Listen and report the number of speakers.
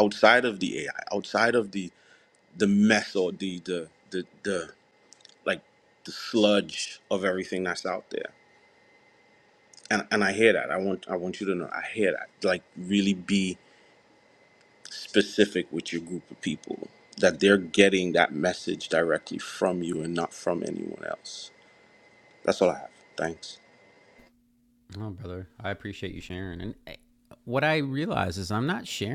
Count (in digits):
2